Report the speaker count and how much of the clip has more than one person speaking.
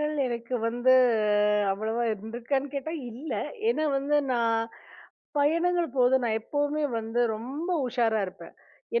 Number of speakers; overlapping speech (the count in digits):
1, no overlap